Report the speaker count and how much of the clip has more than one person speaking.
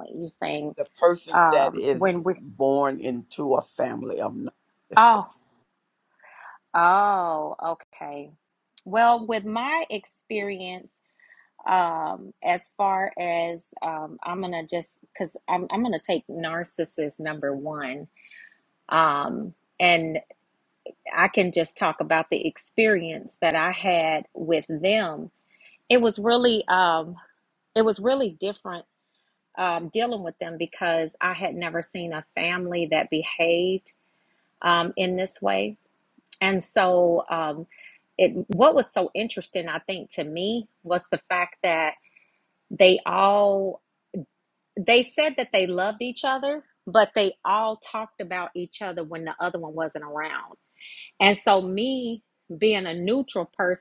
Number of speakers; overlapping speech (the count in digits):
2, about 2%